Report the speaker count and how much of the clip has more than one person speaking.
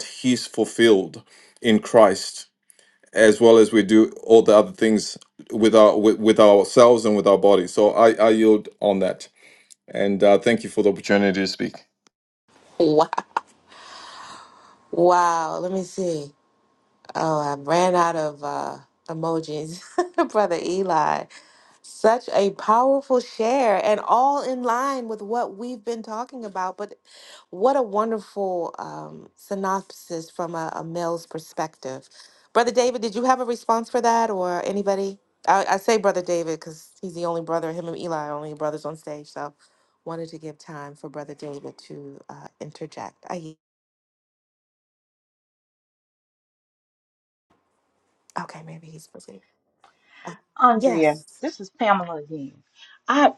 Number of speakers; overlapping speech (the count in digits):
3, under 1%